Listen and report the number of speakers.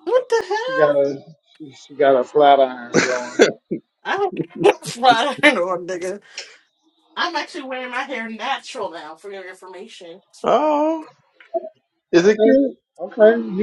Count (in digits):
3